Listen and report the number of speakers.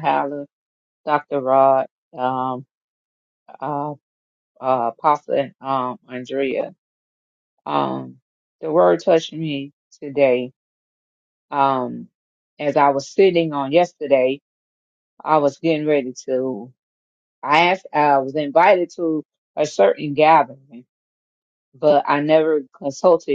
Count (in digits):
1